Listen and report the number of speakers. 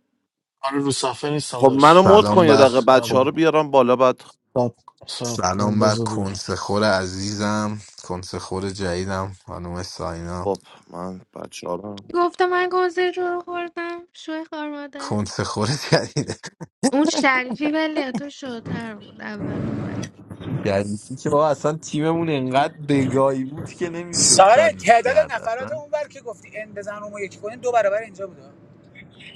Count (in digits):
5